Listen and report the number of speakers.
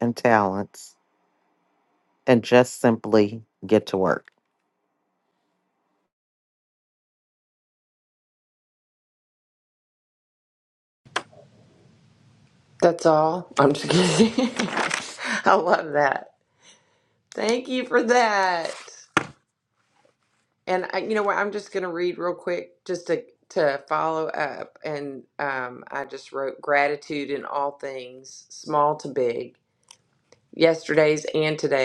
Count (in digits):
2